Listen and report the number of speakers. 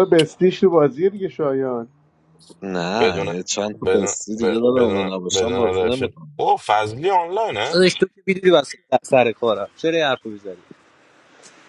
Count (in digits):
4